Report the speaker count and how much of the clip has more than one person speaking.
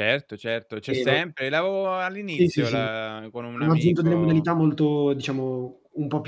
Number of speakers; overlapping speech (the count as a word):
two, about 27%